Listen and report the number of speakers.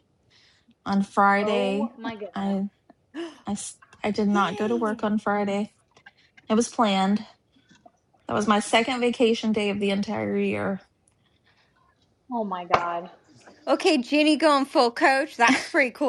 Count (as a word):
three